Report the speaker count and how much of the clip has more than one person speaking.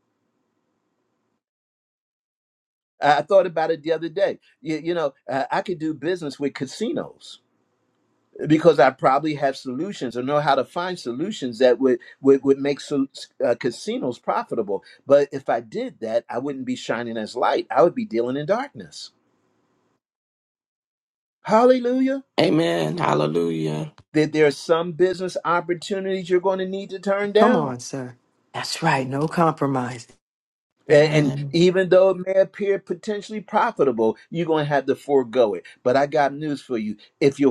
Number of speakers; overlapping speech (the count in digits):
3, about 3%